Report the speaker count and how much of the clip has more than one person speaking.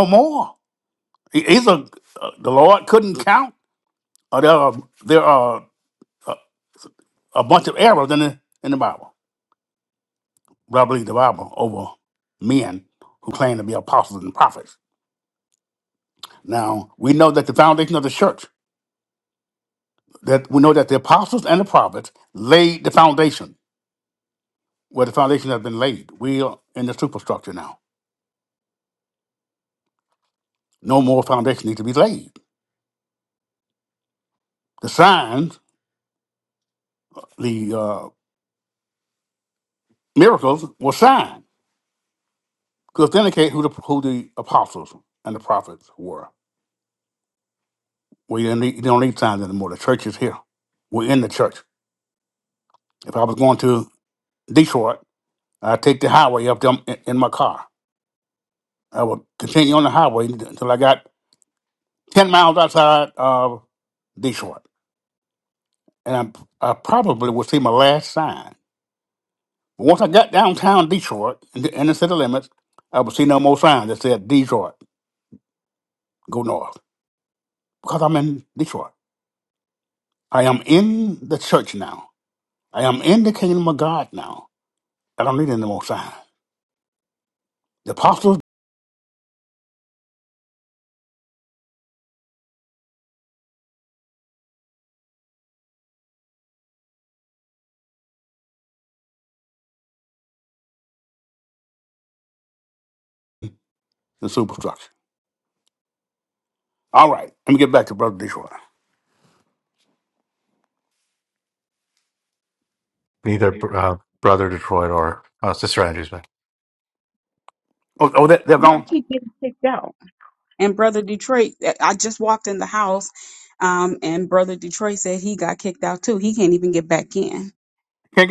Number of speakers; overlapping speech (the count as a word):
three, under 1%